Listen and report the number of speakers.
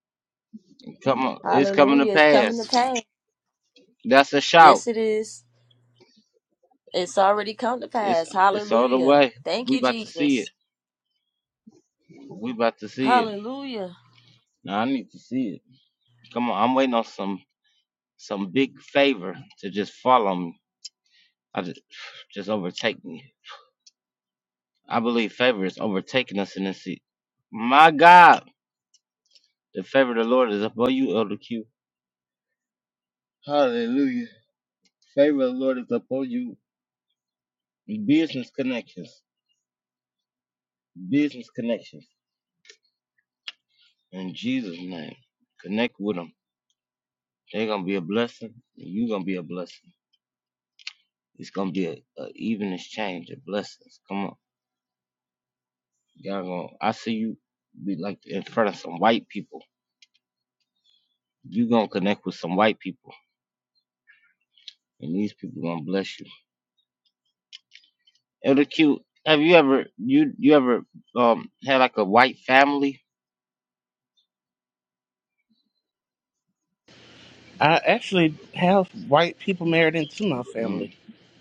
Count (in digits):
3